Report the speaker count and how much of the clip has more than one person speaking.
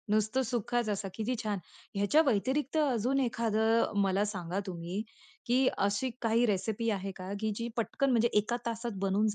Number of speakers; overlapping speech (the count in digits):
1, no overlap